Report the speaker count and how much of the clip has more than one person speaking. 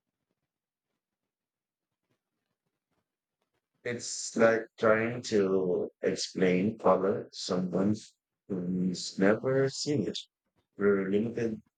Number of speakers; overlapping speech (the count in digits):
1, no overlap